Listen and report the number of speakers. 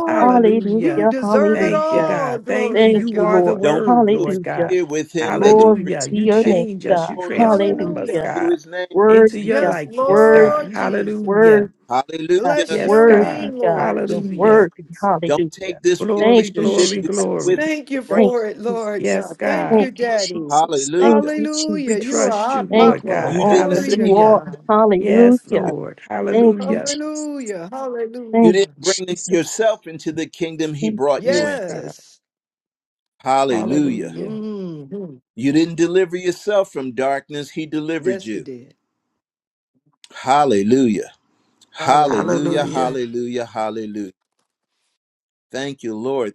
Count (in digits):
4